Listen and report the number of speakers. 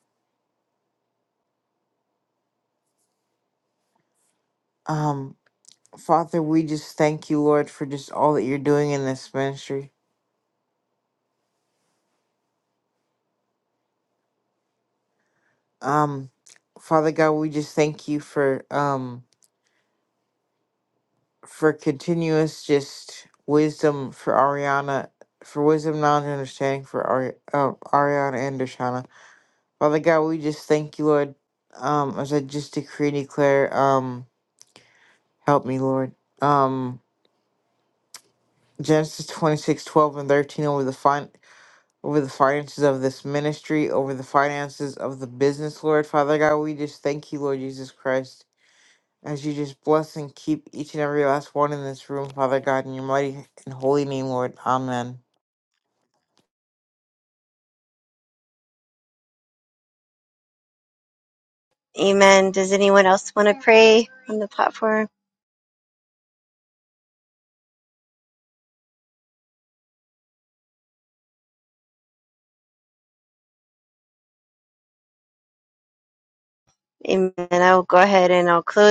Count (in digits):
2